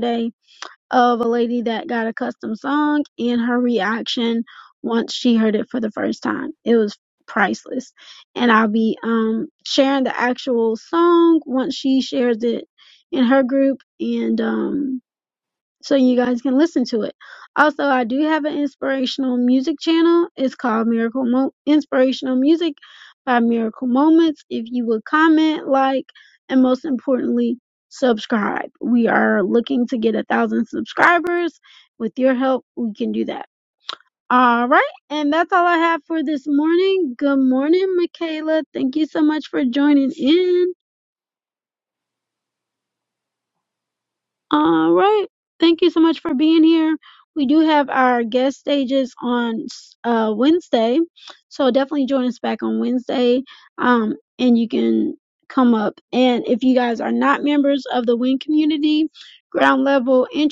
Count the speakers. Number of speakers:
one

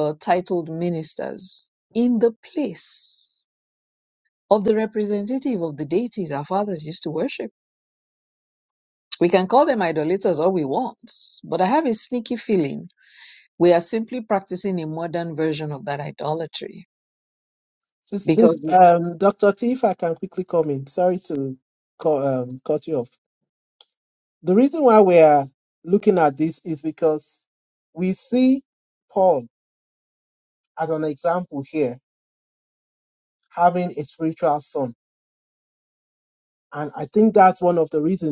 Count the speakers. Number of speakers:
two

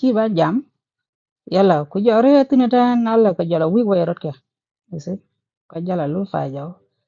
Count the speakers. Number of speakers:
one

